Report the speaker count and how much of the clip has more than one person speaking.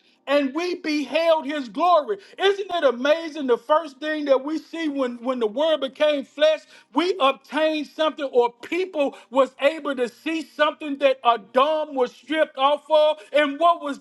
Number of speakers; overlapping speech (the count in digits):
1, no overlap